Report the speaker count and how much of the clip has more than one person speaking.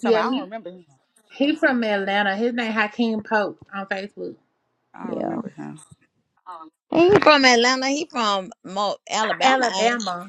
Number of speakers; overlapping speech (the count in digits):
3, about 14%